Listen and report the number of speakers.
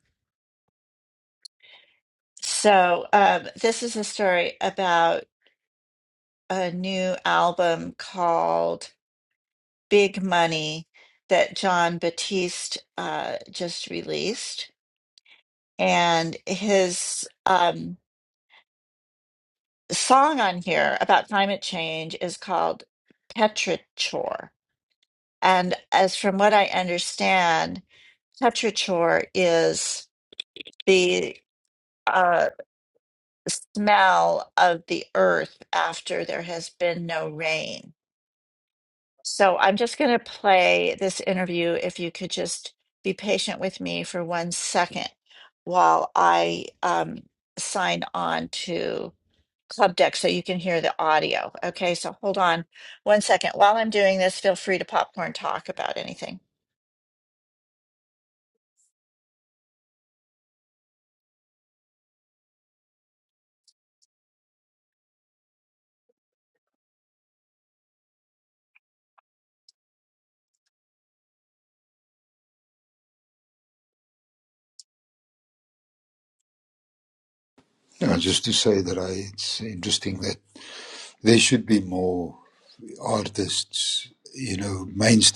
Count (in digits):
2